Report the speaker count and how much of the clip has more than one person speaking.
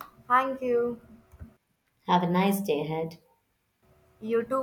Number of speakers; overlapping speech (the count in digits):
2, no overlap